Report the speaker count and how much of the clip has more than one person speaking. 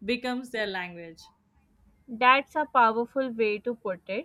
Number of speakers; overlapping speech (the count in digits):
2, no overlap